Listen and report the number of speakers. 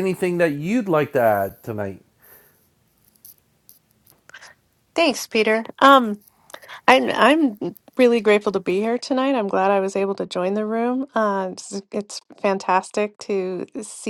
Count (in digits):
2